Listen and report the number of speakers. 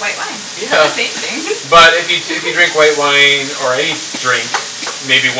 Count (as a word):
two